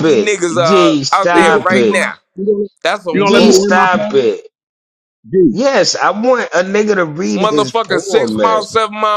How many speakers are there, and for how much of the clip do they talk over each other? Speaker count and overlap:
three, about 50%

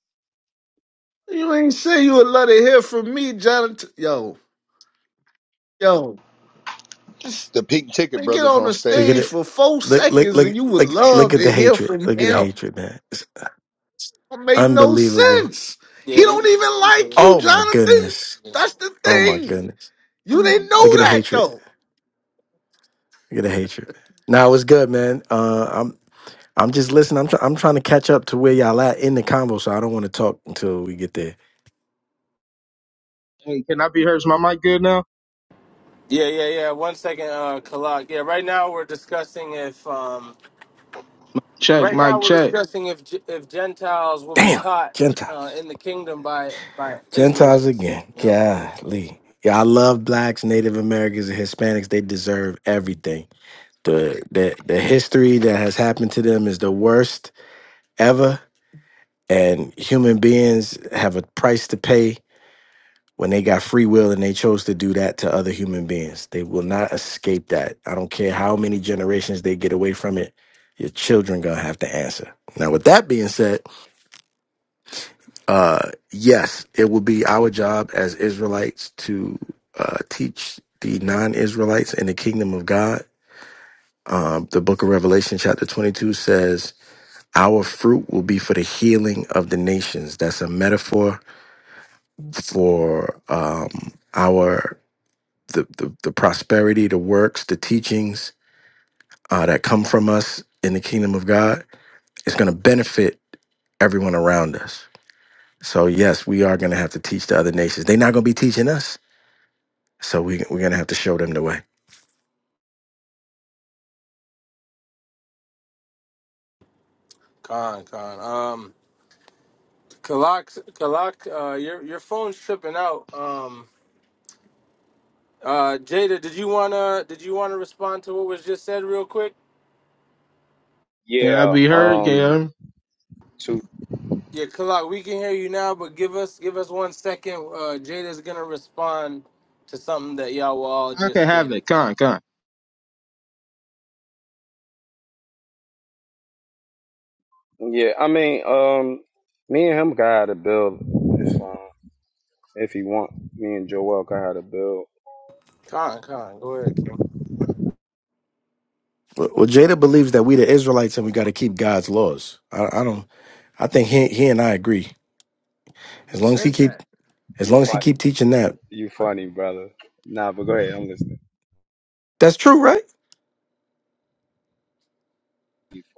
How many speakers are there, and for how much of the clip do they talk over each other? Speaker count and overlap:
six, about 7%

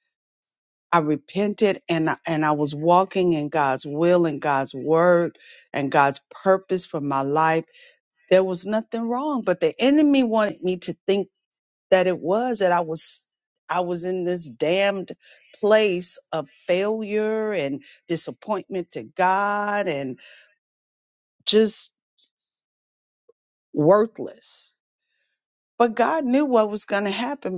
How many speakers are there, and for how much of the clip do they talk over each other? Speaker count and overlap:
one, no overlap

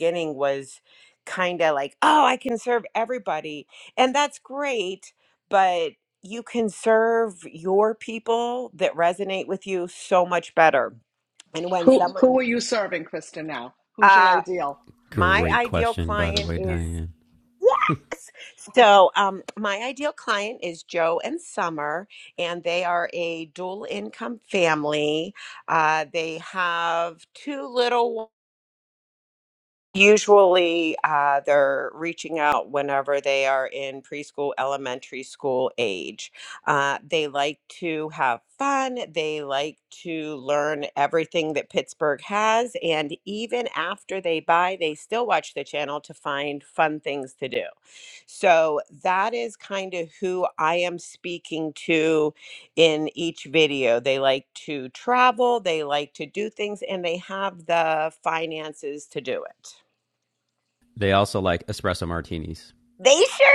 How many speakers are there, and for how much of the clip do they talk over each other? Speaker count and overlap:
three, about 4%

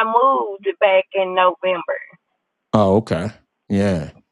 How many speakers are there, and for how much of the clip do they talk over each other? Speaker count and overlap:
two, no overlap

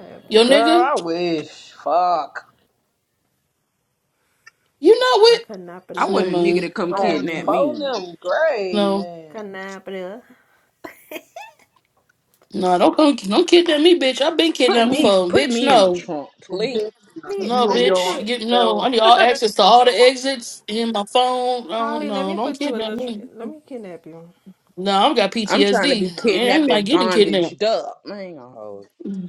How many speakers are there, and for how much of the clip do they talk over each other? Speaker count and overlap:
four, about 33%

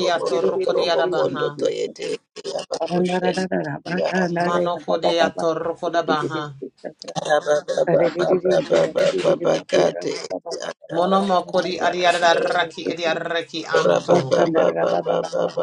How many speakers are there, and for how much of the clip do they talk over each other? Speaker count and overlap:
three, about 81%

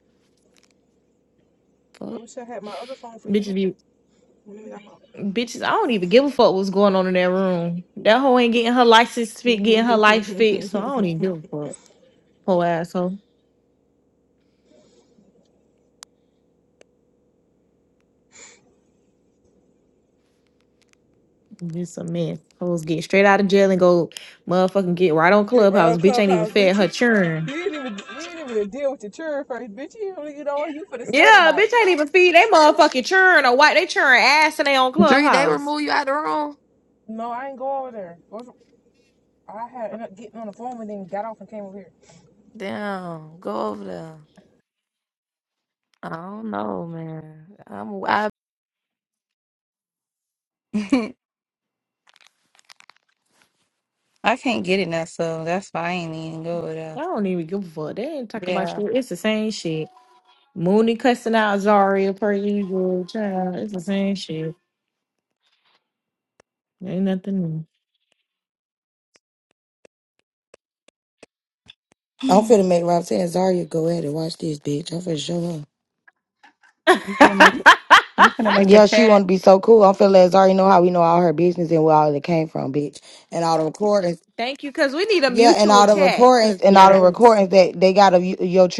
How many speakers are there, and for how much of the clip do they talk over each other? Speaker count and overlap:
five, about 7%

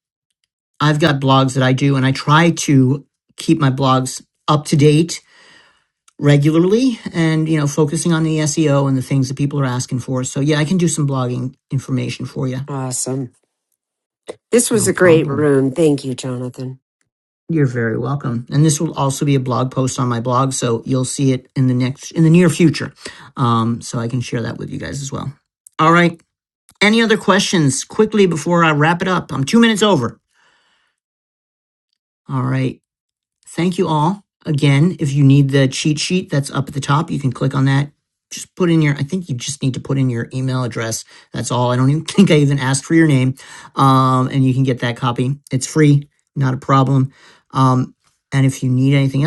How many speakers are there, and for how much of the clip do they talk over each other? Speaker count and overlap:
two, about 1%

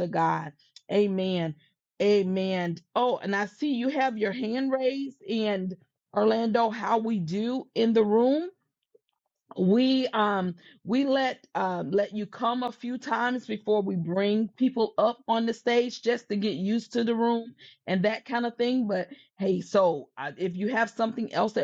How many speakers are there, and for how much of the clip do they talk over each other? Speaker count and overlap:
one, no overlap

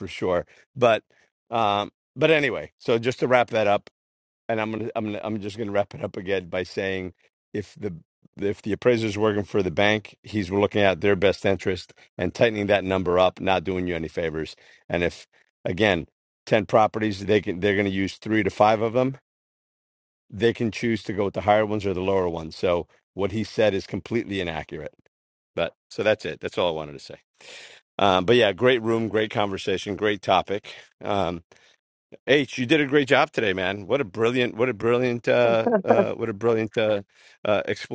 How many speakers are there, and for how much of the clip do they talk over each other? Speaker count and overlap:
one, no overlap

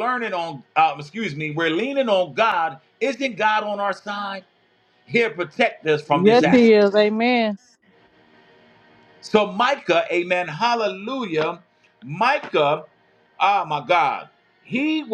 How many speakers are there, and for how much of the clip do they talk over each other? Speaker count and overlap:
two, about 5%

